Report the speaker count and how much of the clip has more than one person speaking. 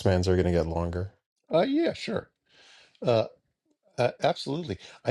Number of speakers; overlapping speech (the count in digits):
2, no overlap